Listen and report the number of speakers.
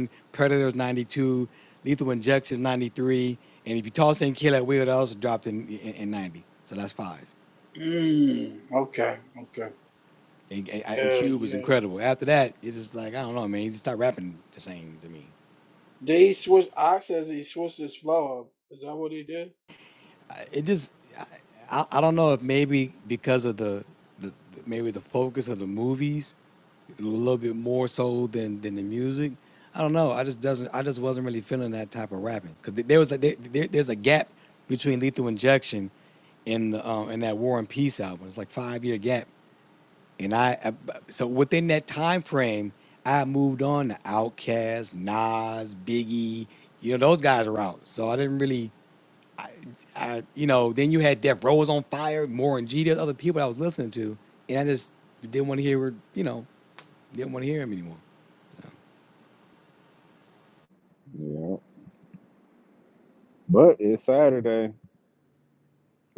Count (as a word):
three